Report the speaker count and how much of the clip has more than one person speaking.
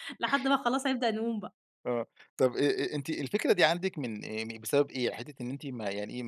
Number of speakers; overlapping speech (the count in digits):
2, no overlap